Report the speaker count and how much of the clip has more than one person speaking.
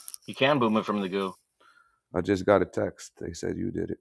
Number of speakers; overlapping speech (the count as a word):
two, no overlap